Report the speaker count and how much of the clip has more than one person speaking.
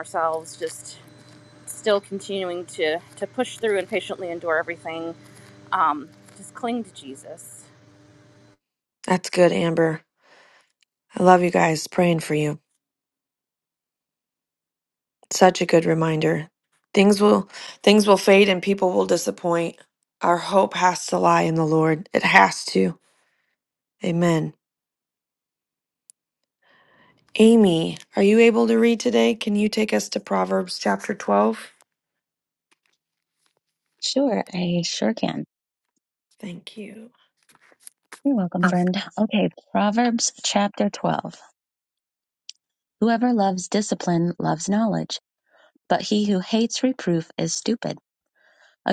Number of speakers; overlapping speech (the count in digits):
3, no overlap